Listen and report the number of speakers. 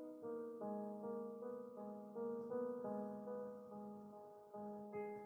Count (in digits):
0